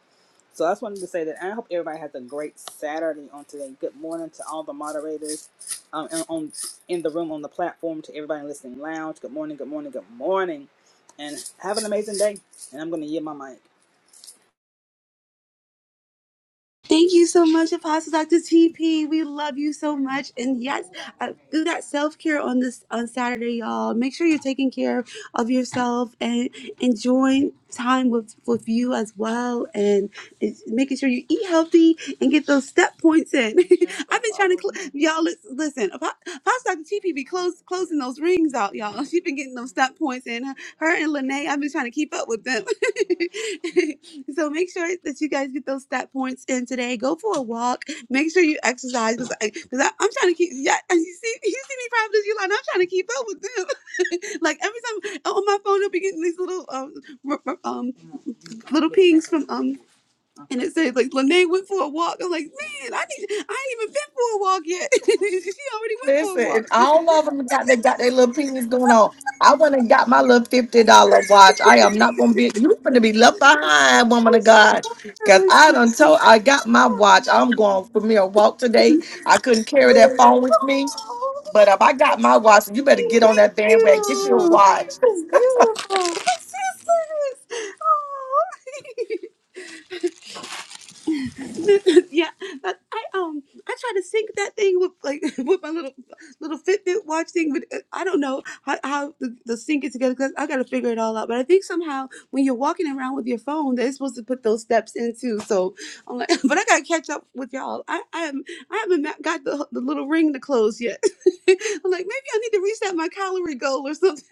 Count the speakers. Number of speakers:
3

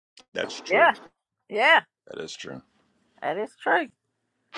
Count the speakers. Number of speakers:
2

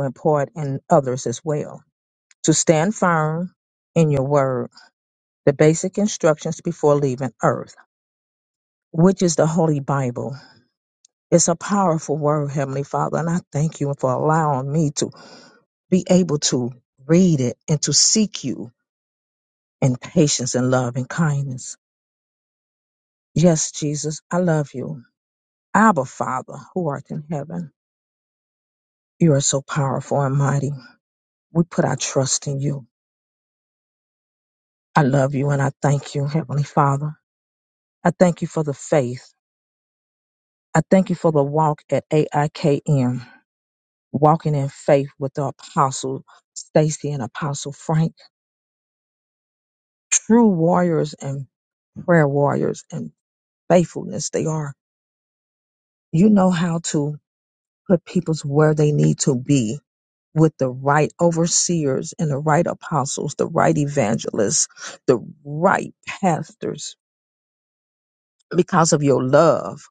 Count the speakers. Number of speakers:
1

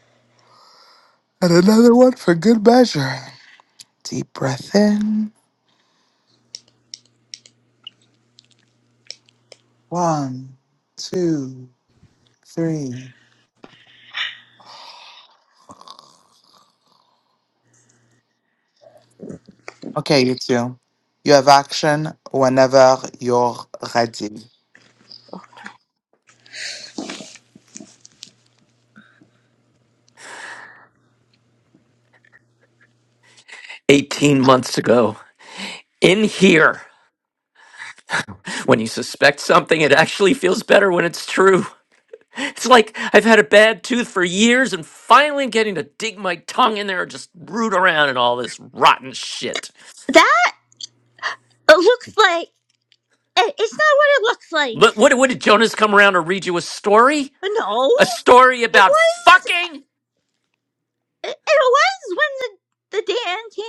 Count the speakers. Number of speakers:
3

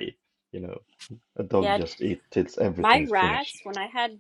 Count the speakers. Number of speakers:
2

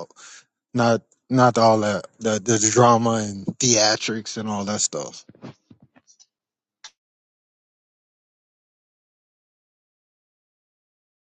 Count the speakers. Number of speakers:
1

